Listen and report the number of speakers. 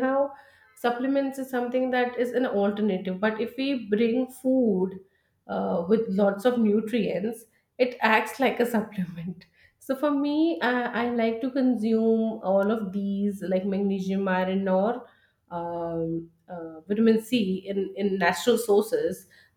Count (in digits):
1